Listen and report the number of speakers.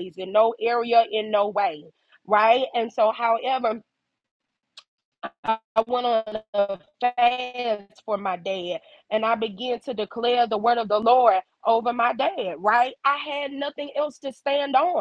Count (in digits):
1